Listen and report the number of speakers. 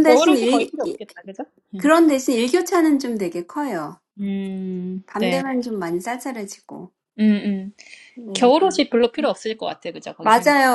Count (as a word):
two